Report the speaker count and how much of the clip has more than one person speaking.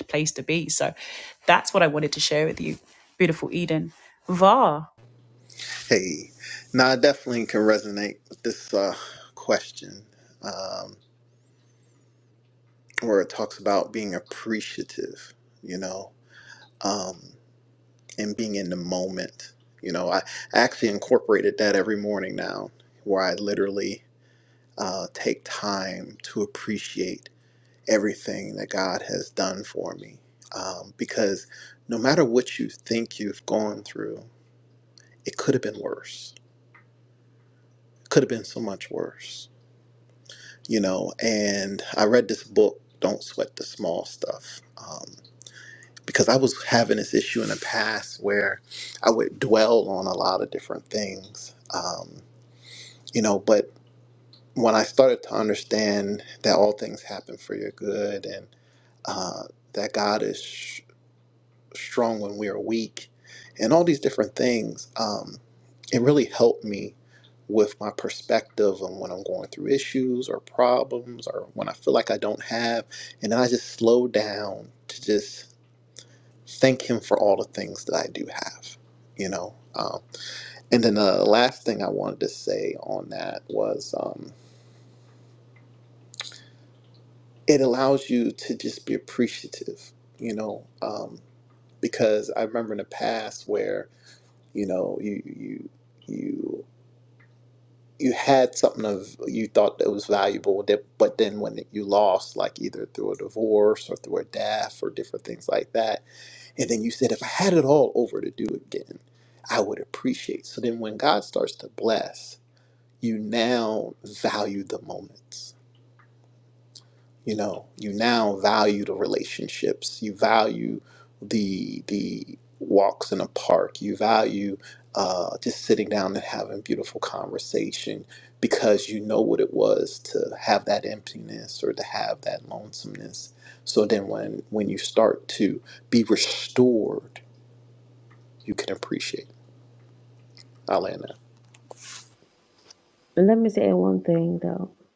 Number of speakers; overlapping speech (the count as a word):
three, no overlap